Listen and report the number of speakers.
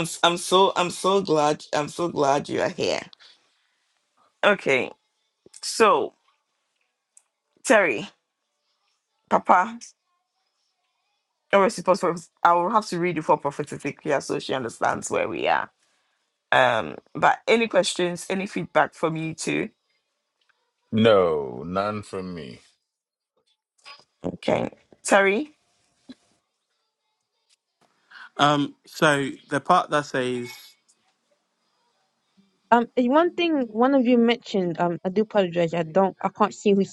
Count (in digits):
4